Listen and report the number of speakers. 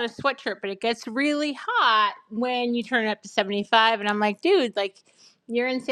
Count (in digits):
1